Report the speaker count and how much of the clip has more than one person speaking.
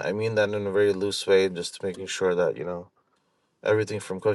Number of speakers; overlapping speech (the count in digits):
1, no overlap